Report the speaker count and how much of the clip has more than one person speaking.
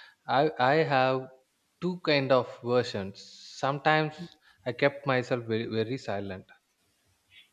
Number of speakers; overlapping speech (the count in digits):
1, no overlap